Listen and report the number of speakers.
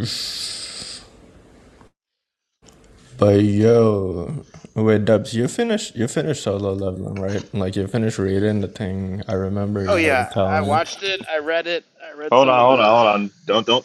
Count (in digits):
3